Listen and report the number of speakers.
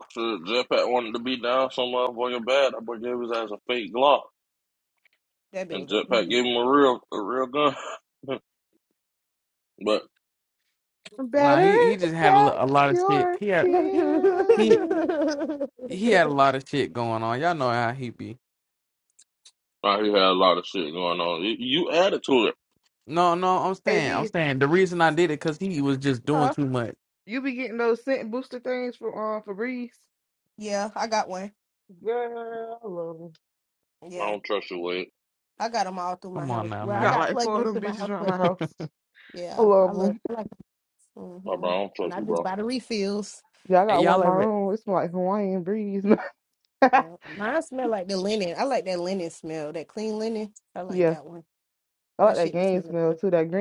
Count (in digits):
4